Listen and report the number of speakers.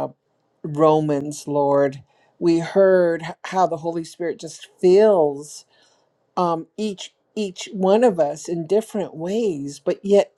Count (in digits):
1